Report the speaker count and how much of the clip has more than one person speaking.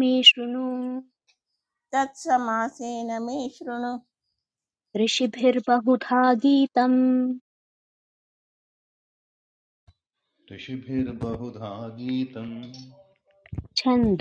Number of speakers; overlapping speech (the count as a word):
three, under 1%